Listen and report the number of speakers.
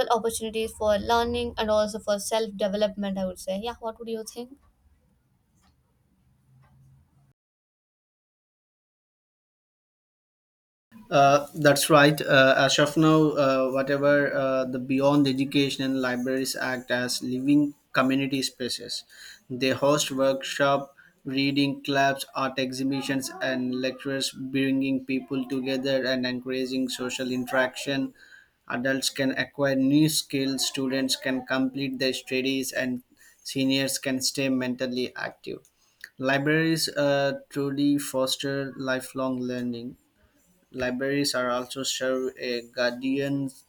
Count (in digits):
2